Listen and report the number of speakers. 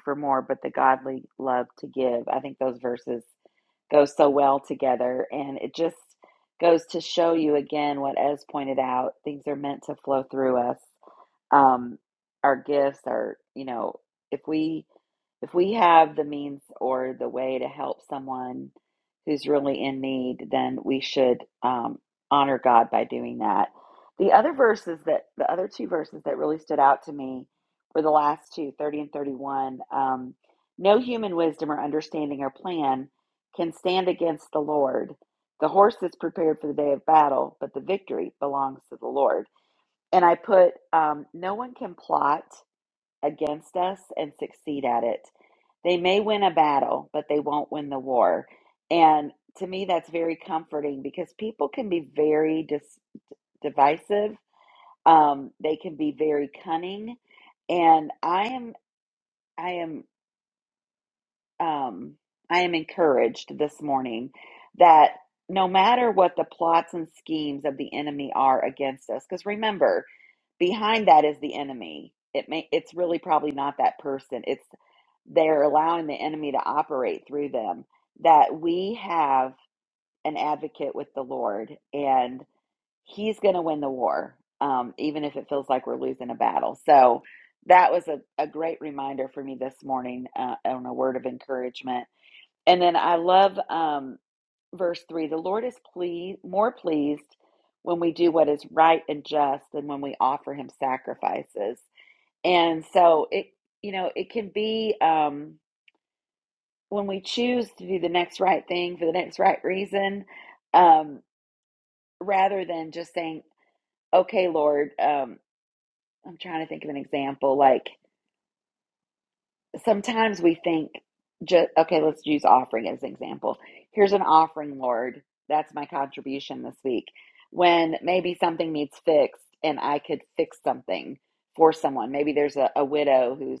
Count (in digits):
1